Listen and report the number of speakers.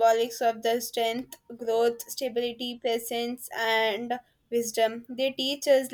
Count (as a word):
one